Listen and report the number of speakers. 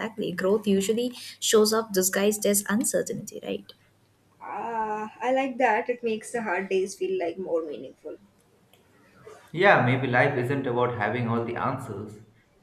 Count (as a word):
three